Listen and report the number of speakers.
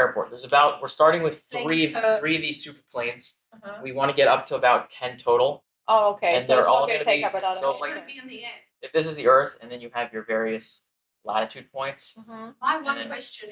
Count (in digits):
3